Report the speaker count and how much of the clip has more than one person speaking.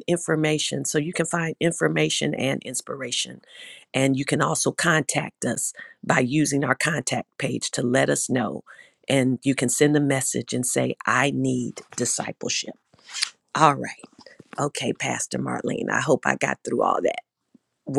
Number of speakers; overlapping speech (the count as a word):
one, no overlap